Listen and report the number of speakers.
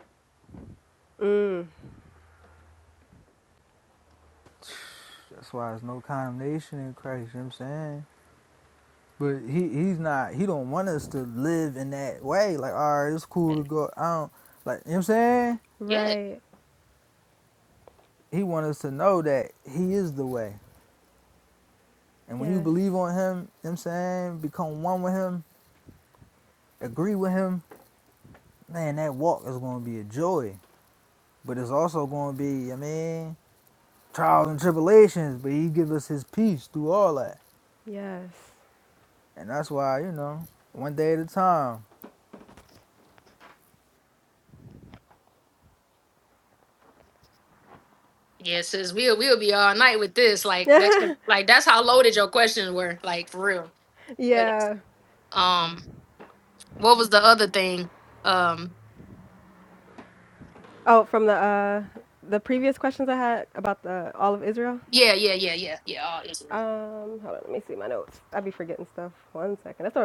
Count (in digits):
3